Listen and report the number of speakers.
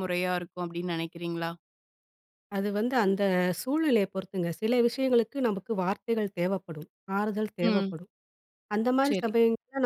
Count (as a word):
two